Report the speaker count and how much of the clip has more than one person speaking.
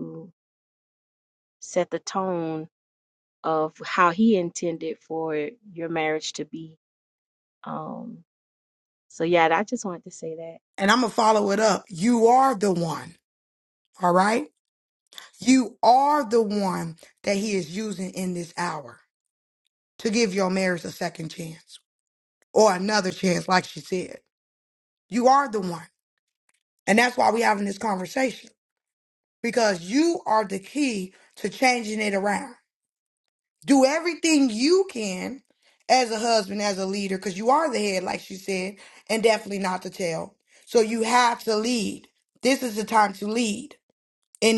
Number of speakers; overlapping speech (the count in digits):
2, no overlap